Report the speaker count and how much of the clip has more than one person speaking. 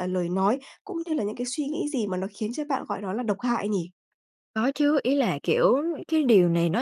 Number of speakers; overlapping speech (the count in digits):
2, no overlap